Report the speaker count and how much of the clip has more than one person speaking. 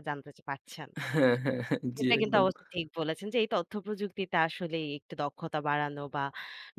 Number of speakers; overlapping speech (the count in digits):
2, about 7%